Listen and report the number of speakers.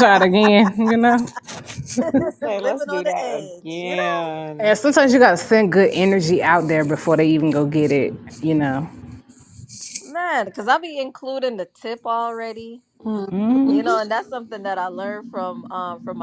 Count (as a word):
three